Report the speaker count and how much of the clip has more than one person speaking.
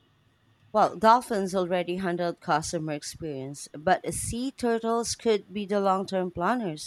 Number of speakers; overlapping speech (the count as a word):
one, no overlap